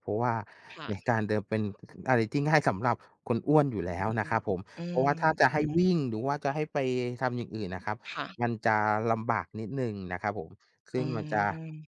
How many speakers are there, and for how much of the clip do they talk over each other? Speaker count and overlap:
two, about 5%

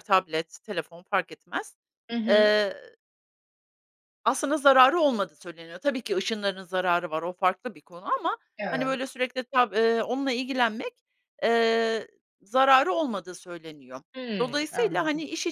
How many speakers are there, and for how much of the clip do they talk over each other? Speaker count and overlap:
two, about 8%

